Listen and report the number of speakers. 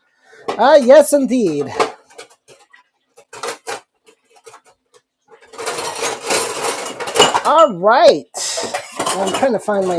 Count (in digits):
1